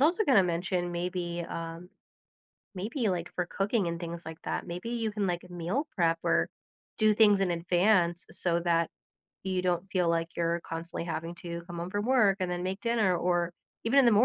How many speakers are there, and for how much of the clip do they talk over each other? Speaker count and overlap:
1, no overlap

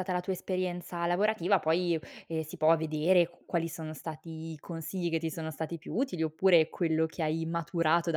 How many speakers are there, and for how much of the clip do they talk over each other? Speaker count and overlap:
1, no overlap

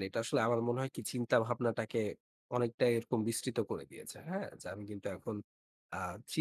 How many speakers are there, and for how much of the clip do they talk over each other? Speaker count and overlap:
1, no overlap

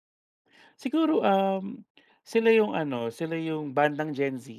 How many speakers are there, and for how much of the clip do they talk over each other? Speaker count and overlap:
1, no overlap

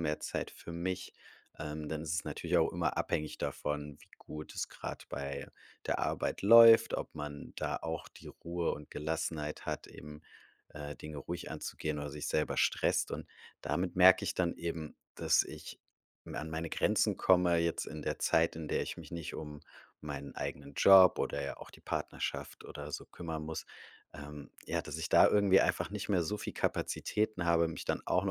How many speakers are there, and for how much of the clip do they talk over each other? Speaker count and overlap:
1, no overlap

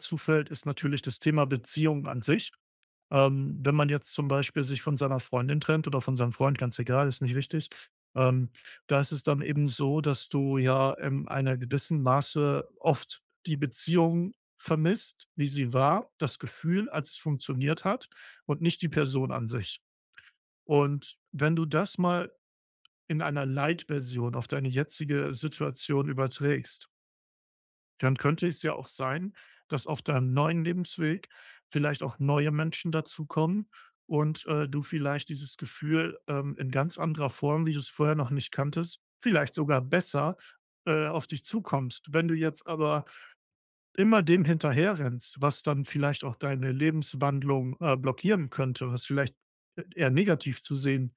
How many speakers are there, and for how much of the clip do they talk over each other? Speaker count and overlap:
1, no overlap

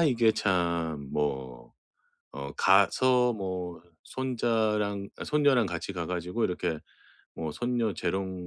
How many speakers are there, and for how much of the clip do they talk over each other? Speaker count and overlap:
1, no overlap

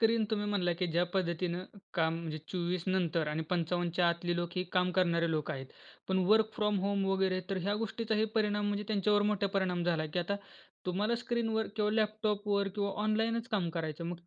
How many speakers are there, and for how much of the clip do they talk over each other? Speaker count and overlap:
1, no overlap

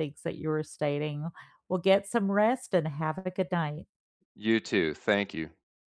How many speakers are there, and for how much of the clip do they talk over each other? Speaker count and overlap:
2, no overlap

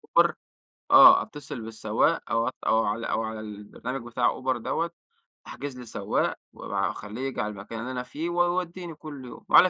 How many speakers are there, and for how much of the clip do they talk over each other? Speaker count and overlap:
1, no overlap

